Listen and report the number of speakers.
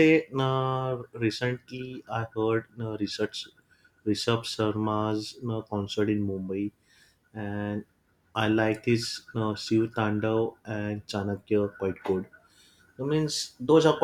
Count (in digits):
1